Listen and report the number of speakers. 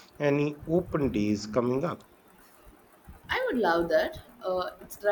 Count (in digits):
2